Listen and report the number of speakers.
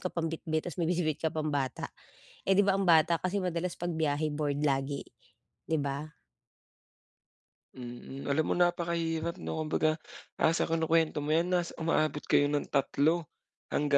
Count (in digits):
2